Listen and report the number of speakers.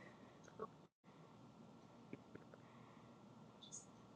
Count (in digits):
0